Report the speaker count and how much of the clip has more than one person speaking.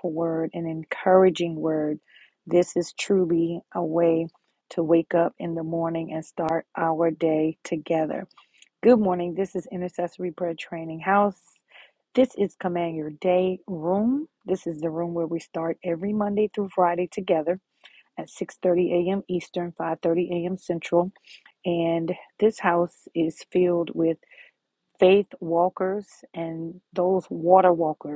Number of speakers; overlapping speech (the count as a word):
one, no overlap